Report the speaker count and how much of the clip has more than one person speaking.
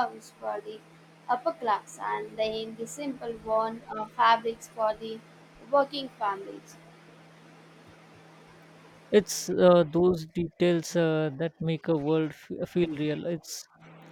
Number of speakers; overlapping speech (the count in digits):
2, no overlap